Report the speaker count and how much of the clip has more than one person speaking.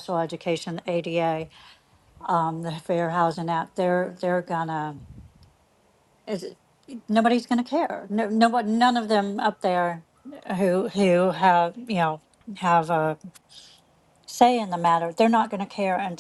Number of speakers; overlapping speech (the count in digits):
1, no overlap